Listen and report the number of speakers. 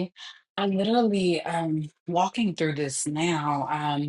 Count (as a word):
one